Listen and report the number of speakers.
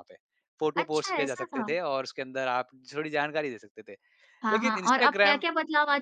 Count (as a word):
two